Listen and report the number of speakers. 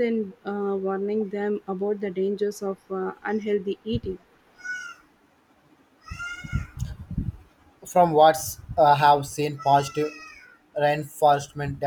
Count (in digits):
2